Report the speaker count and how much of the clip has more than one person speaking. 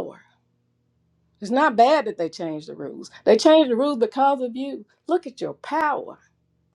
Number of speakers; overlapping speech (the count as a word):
one, no overlap